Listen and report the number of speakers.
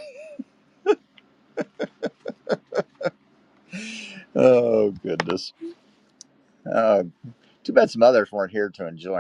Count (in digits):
1